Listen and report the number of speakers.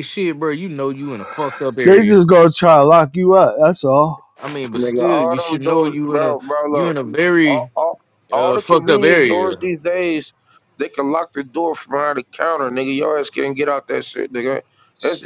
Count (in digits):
3